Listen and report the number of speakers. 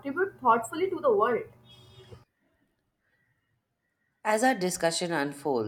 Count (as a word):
two